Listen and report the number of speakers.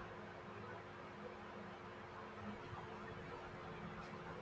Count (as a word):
zero